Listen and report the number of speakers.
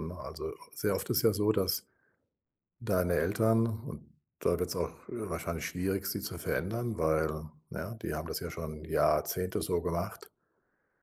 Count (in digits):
1